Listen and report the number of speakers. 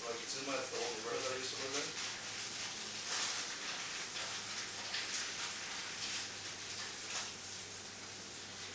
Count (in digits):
1